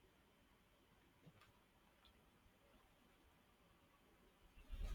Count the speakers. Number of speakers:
0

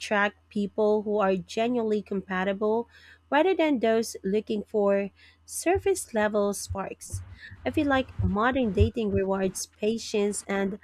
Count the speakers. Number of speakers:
1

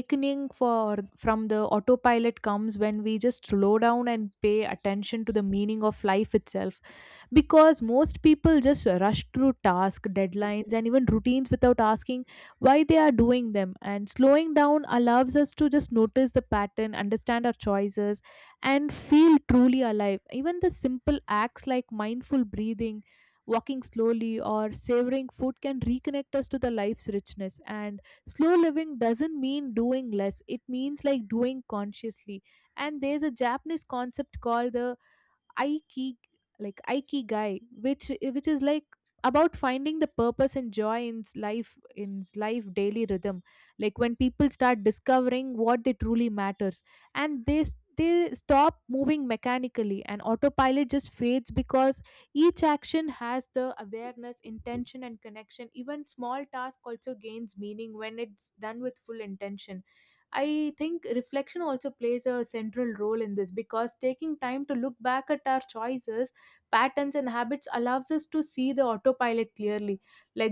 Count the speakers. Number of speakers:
1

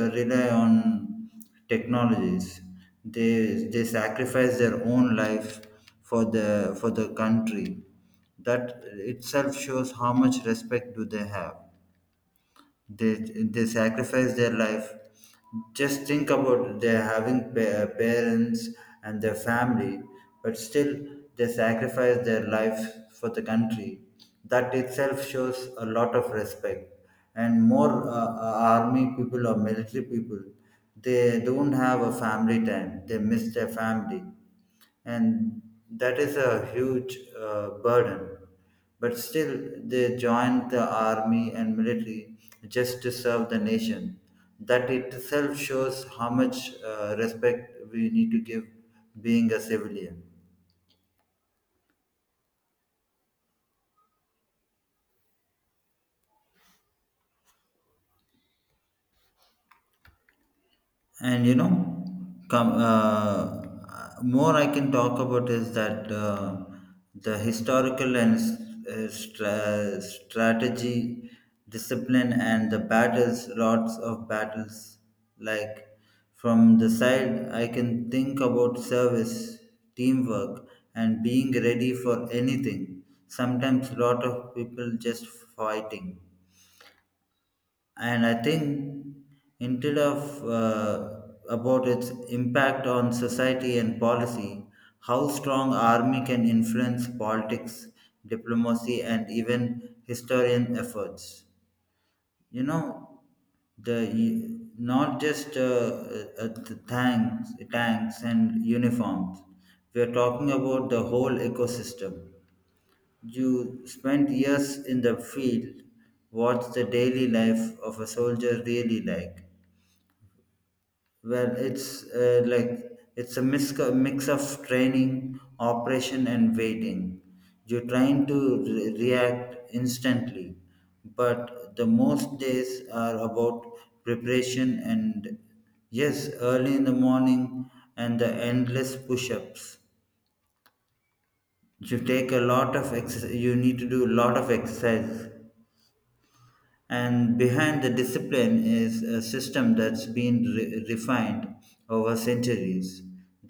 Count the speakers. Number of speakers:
1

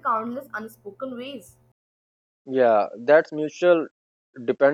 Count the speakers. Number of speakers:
2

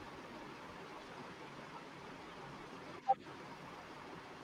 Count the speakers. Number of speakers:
0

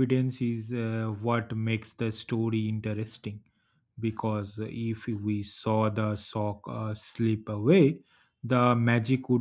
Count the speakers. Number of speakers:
1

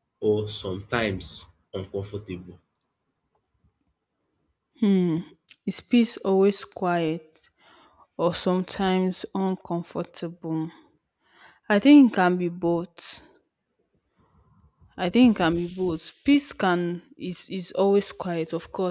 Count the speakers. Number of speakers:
2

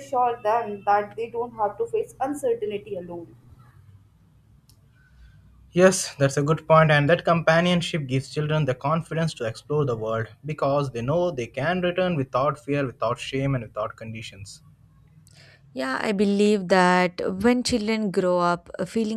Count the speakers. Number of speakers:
3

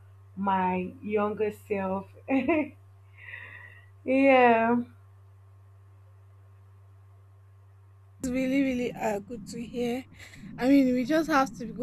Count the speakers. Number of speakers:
2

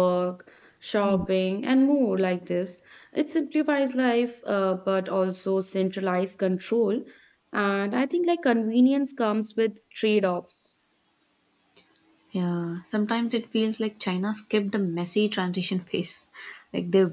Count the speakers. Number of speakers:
2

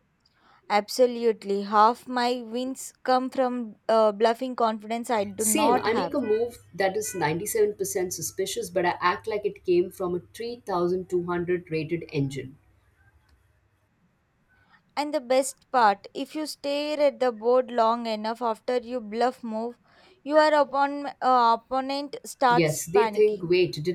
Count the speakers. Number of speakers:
2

